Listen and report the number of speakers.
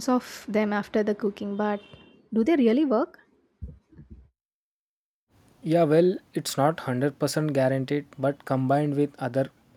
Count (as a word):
two